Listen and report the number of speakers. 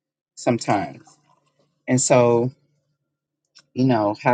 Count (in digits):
1